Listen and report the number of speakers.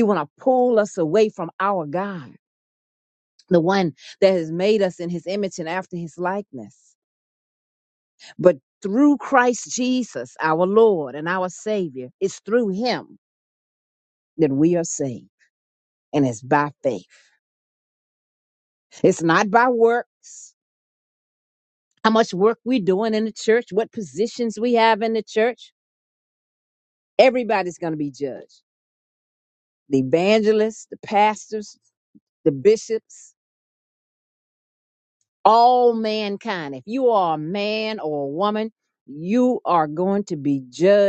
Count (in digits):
1